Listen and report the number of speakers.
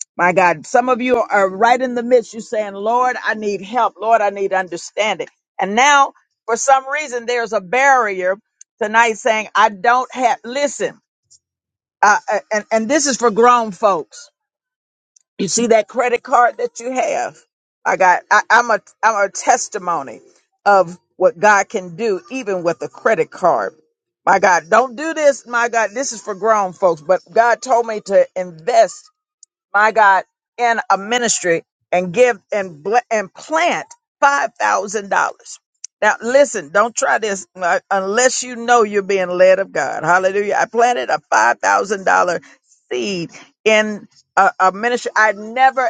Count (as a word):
one